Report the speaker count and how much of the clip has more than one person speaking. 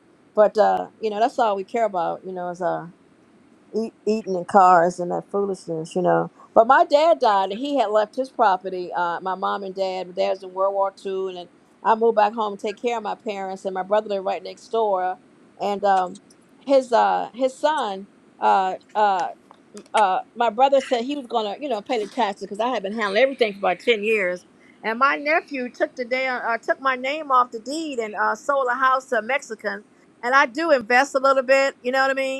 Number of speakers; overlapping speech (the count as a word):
one, no overlap